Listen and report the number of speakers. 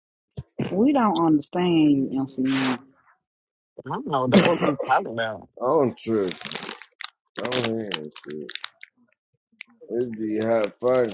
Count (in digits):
3